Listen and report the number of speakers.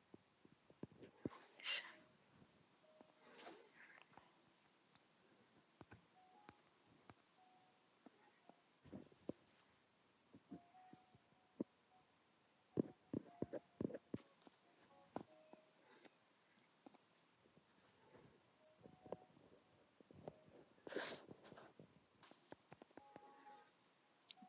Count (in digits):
0